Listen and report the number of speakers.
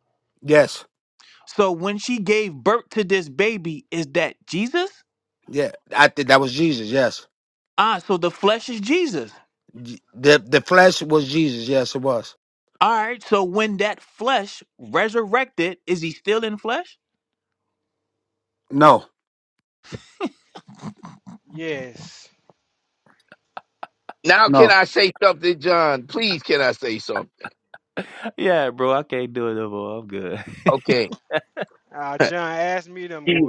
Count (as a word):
four